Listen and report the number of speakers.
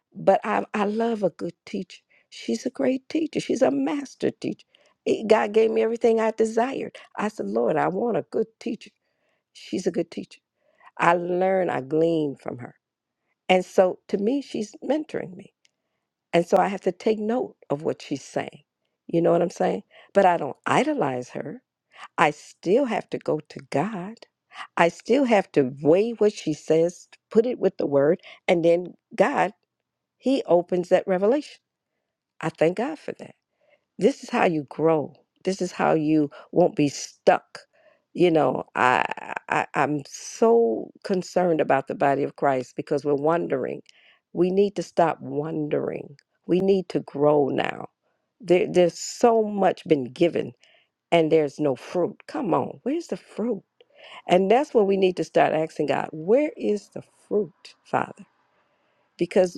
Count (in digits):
1